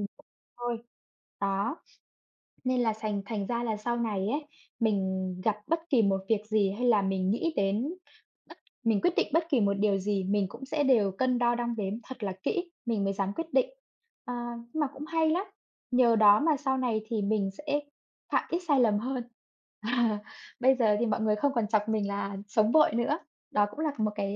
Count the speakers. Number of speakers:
1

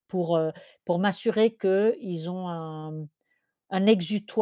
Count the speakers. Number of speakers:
1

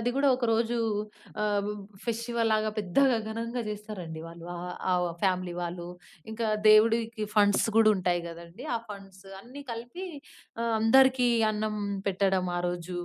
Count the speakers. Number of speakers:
1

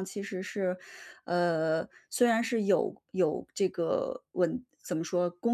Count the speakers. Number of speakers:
1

